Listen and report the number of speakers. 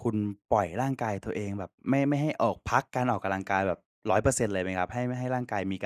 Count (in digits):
1